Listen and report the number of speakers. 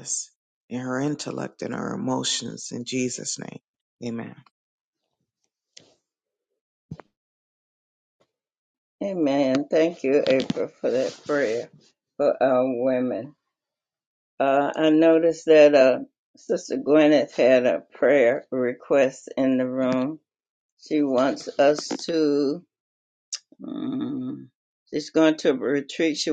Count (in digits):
2